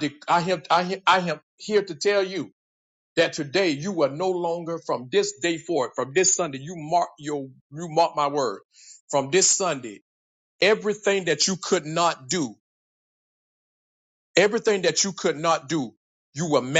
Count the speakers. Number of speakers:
1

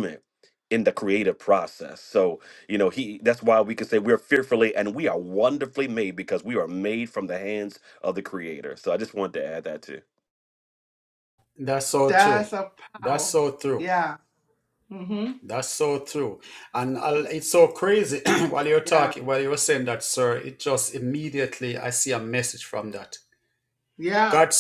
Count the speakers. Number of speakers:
3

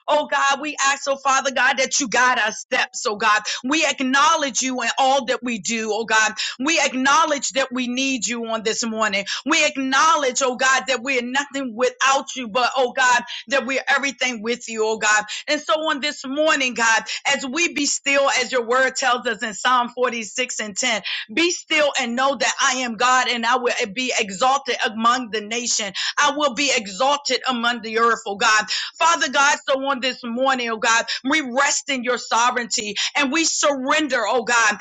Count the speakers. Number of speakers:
1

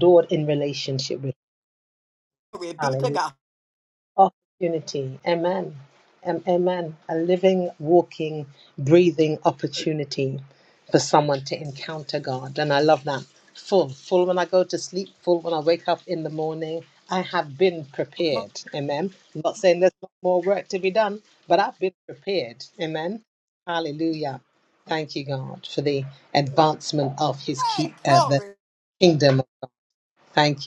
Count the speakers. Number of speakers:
2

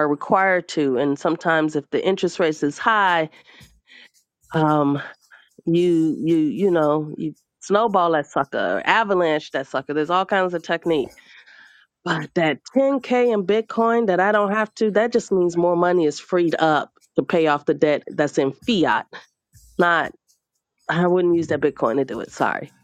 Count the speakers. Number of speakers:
1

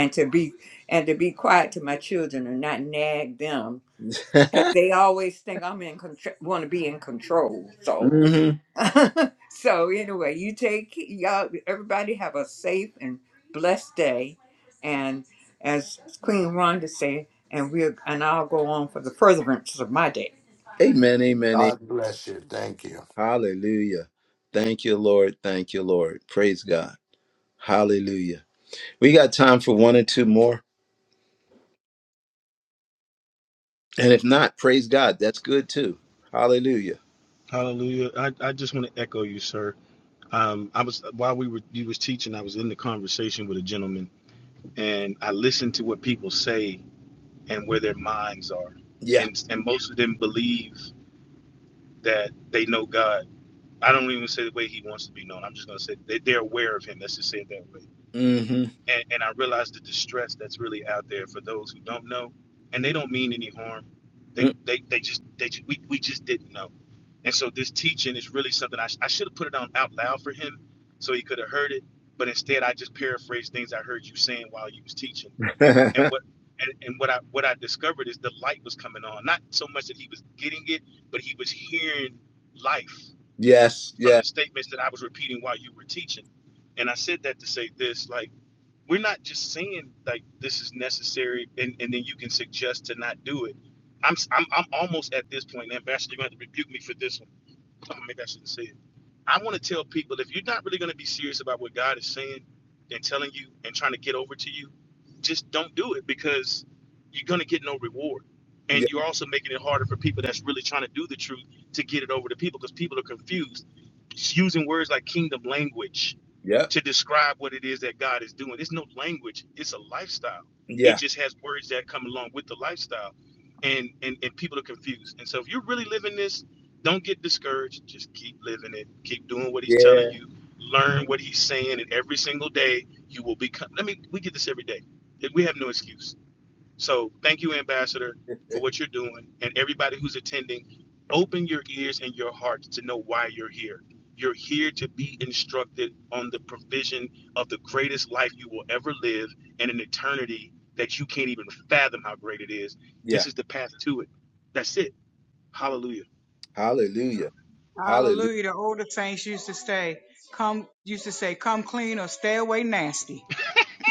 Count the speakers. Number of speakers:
5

